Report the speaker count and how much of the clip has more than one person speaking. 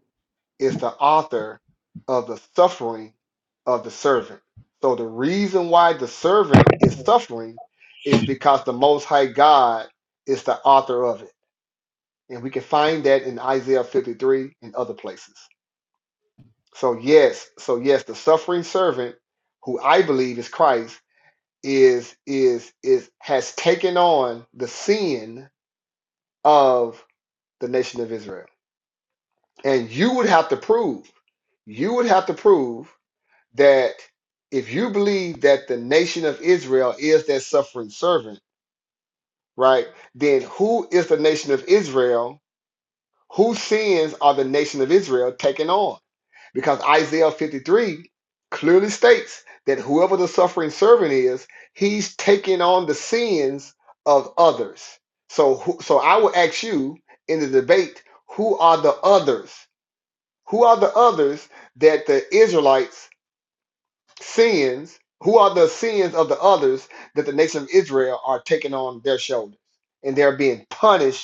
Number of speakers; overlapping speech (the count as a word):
one, no overlap